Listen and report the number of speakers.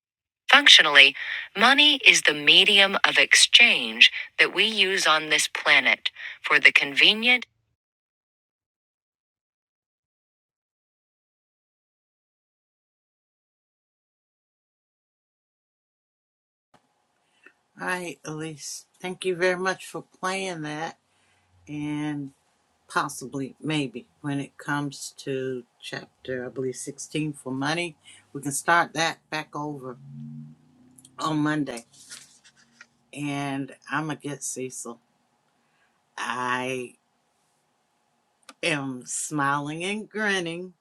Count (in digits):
2